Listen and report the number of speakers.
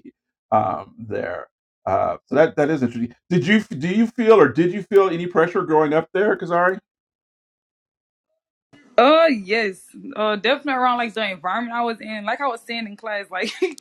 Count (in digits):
2